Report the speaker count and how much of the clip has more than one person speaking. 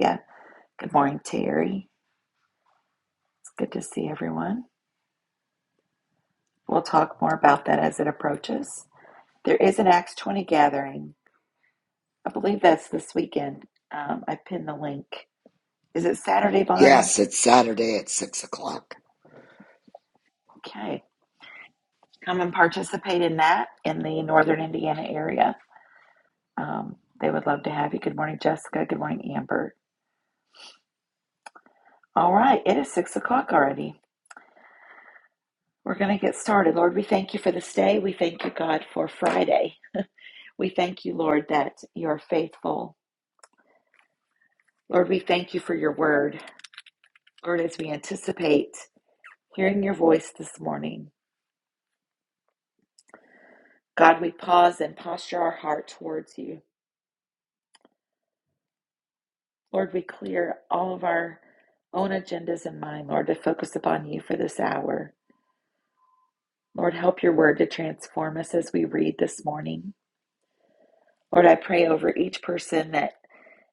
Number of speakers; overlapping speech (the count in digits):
2, under 1%